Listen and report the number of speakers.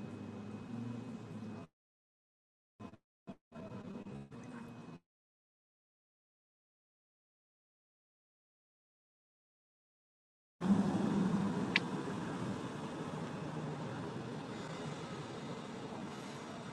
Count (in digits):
0